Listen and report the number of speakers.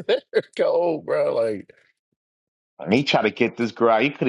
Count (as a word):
two